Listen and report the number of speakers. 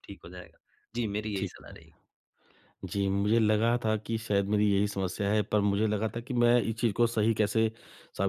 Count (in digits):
2